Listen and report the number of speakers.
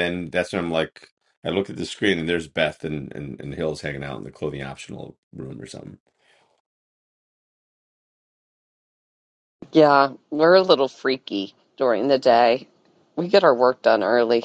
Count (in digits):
2